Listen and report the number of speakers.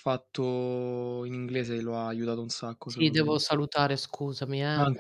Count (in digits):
2